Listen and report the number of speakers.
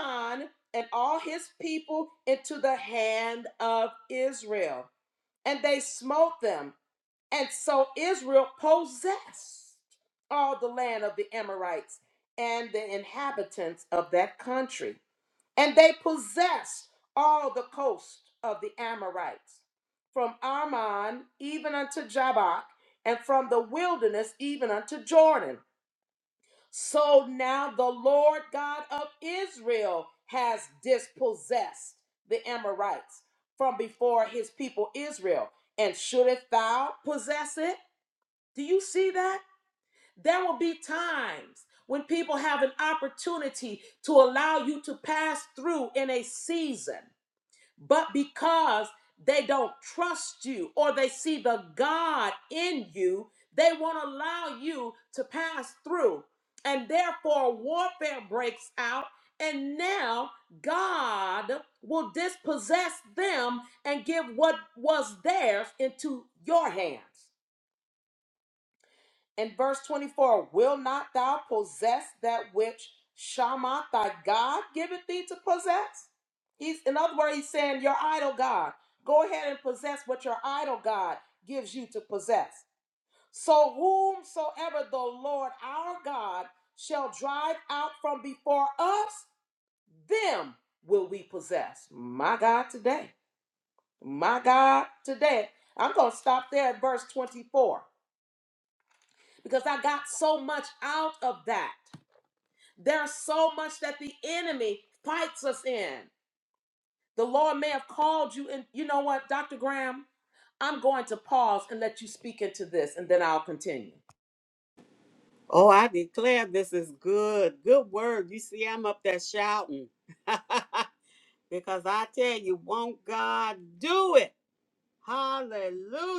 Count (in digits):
2